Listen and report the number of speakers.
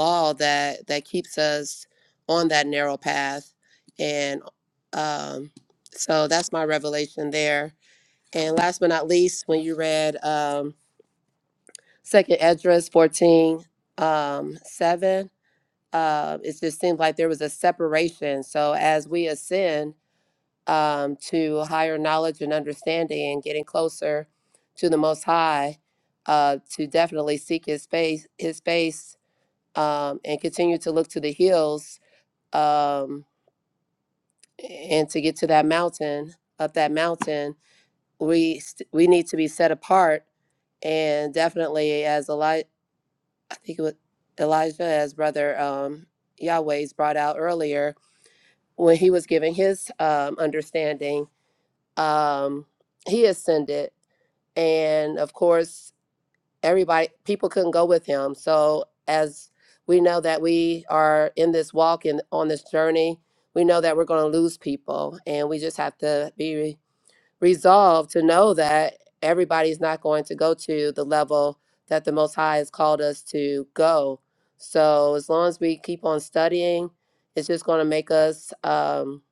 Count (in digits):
1